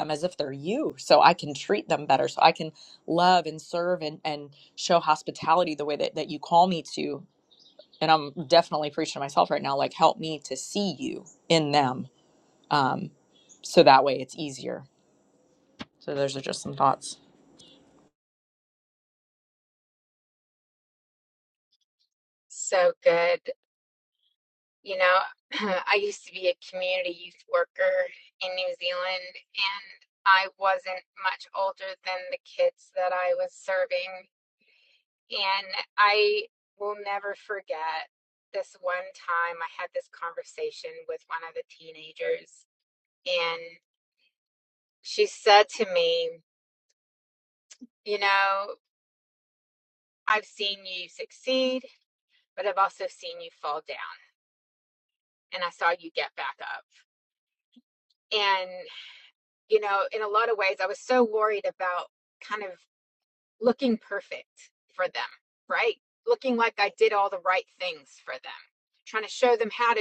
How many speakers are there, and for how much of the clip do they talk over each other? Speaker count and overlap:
two, no overlap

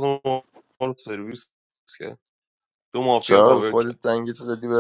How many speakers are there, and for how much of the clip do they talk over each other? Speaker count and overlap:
two, about 15%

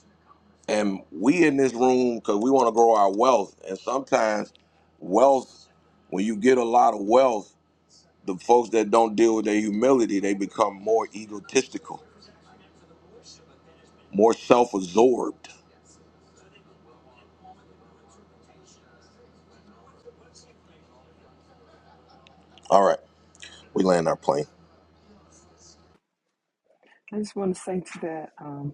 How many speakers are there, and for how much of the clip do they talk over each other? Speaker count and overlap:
two, no overlap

